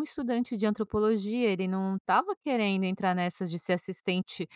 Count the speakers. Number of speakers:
one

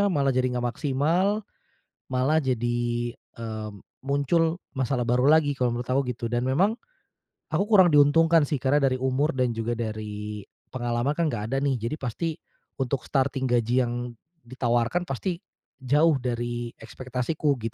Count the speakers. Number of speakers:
one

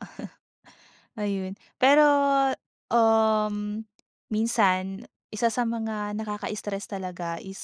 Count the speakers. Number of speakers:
one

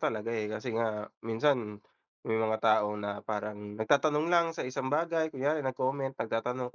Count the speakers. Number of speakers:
one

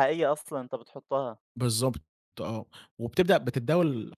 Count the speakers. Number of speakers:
two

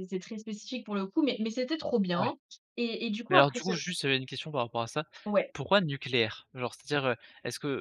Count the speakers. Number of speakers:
two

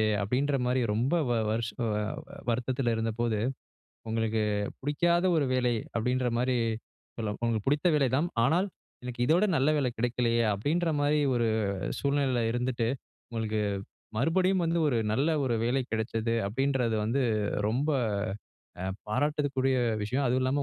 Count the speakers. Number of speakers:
one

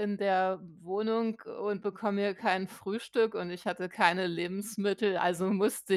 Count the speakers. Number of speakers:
one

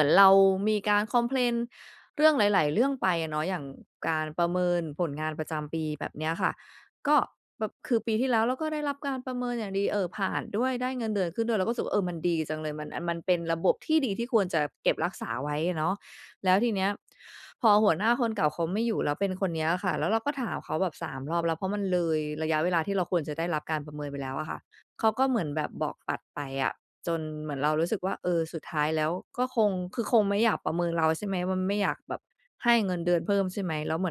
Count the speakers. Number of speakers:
one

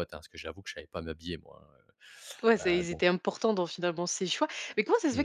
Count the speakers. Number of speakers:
two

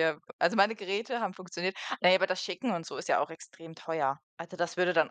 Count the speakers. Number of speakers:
one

